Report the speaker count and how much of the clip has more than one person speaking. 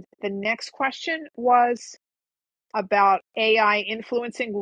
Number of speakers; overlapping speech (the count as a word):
one, no overlap